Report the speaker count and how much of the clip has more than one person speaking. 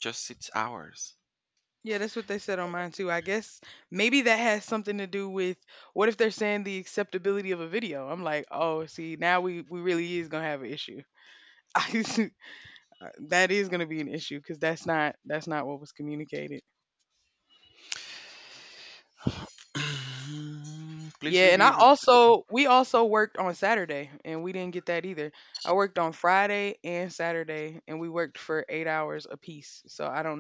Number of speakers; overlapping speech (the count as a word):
two, about 2%